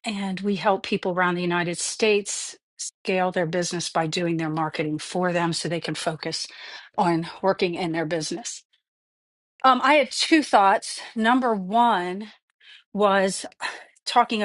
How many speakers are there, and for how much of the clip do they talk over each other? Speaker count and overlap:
1, no overlap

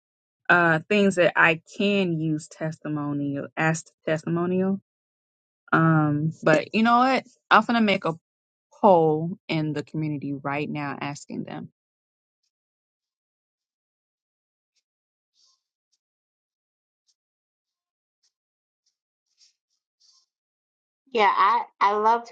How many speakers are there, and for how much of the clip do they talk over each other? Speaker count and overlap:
2, no overlap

